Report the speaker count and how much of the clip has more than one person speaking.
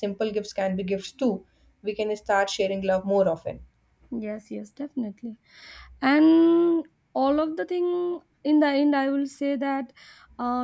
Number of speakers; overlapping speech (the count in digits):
2, no overlap